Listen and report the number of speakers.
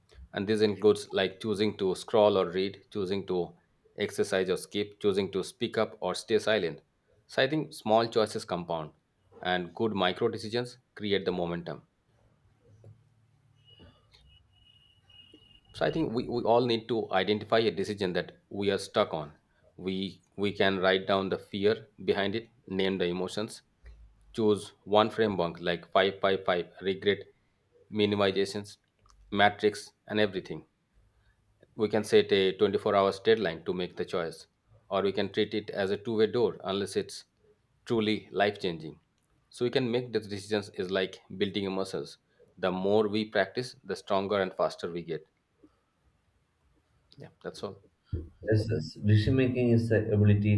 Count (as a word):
two